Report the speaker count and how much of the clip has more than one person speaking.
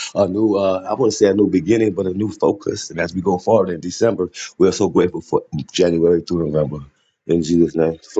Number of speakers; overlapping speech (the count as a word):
one, no overlap